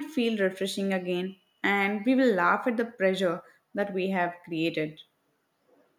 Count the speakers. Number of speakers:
1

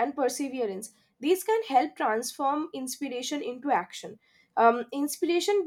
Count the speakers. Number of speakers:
1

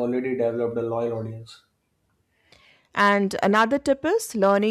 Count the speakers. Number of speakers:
2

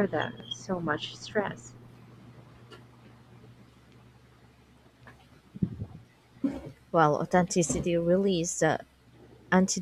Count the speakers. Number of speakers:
2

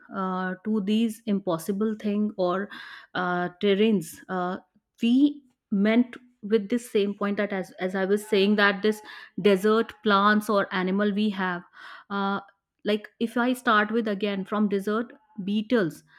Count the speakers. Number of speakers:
1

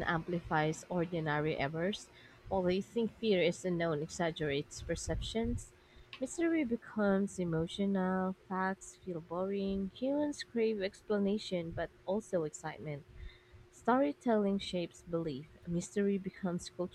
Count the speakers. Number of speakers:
1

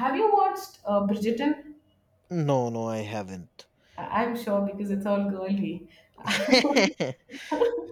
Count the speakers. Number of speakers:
2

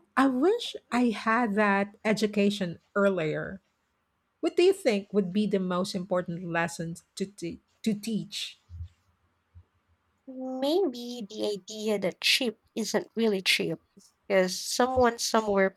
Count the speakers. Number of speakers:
2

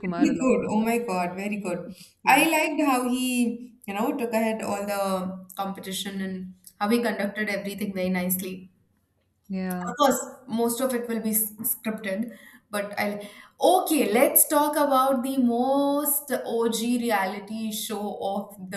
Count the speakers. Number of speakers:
2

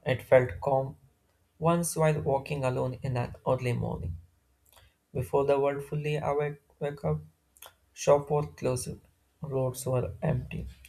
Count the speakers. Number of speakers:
1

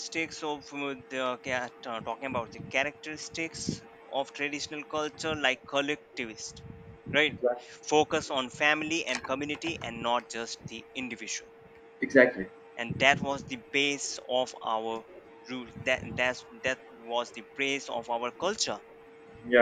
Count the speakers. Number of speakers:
2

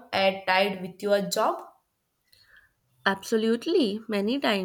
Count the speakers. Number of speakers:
2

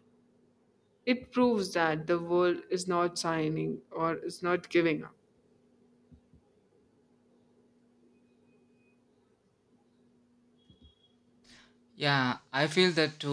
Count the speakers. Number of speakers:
2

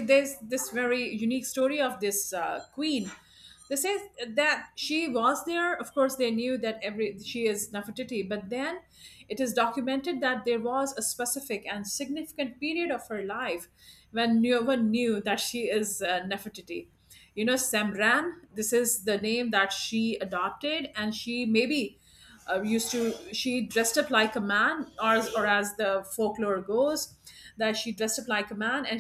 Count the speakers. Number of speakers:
1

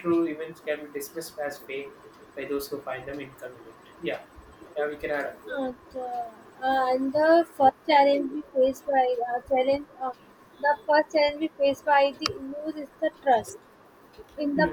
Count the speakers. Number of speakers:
2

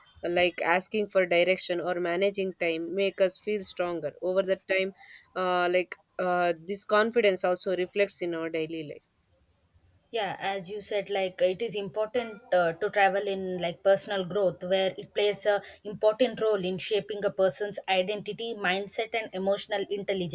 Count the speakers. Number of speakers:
2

